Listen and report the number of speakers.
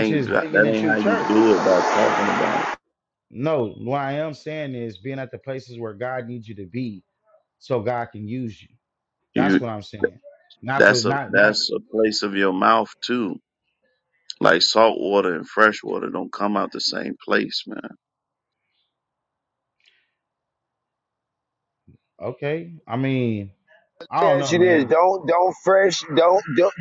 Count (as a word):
three